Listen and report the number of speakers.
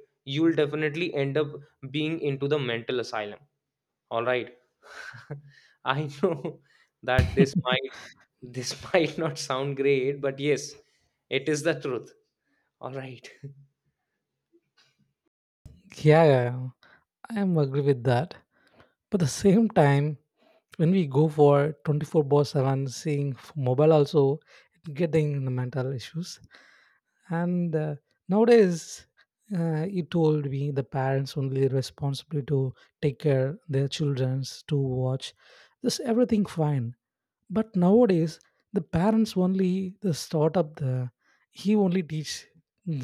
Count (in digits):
2